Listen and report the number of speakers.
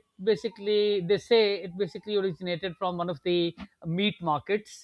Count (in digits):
1